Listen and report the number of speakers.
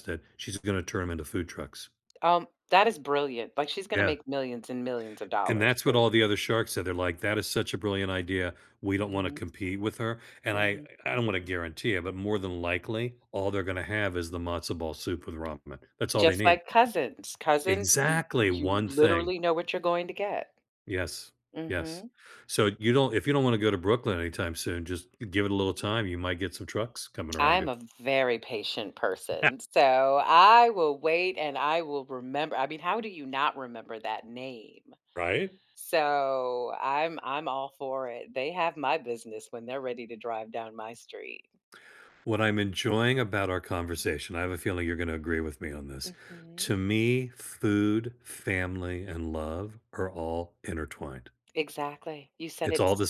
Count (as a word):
two